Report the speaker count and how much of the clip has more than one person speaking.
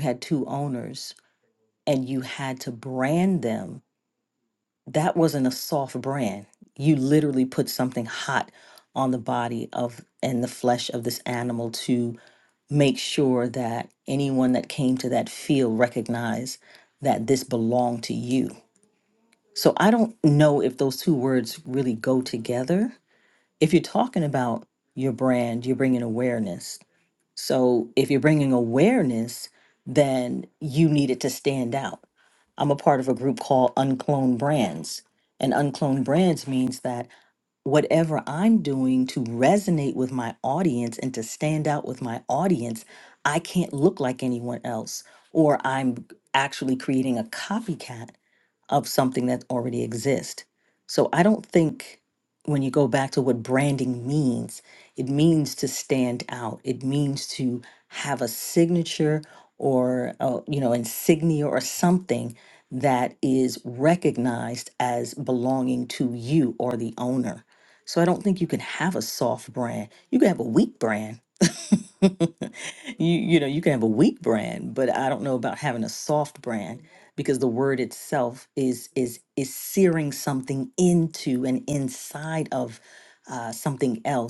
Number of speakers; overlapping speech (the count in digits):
1, no overlap